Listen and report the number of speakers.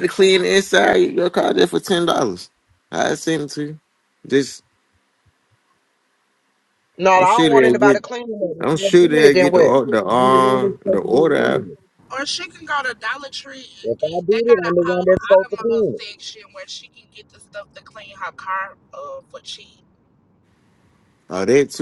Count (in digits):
3